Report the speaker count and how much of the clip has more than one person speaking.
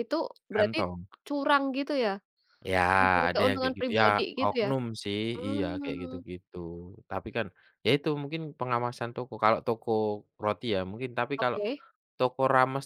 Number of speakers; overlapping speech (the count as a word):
two, about 23%